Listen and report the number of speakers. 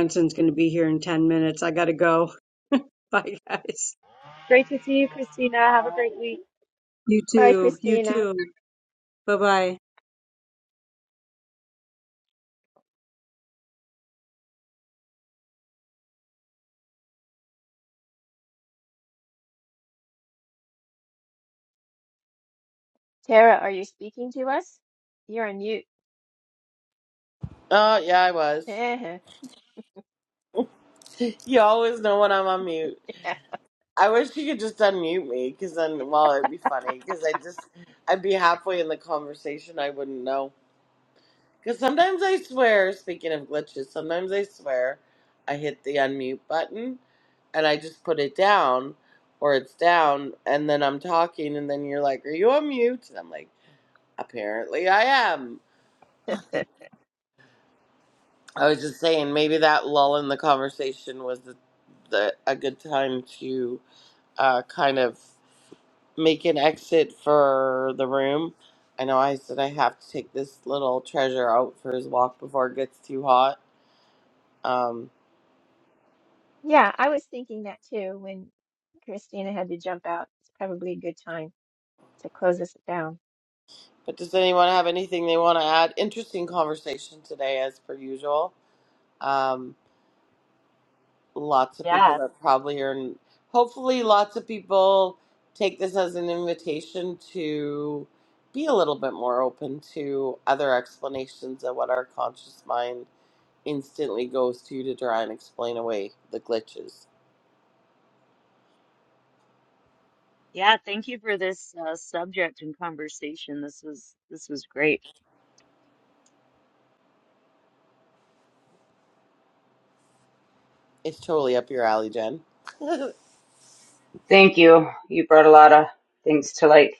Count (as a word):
five